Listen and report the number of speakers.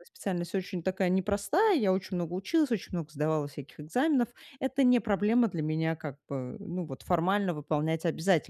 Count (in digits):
1